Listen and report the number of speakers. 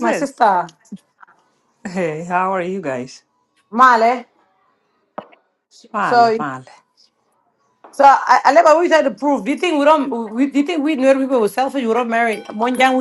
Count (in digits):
2